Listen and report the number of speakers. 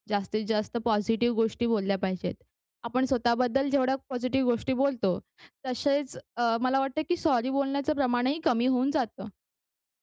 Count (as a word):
one